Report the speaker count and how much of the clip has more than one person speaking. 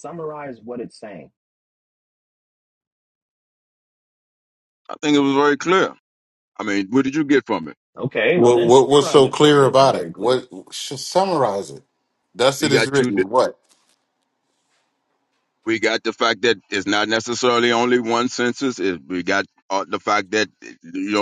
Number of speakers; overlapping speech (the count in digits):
3, about 12%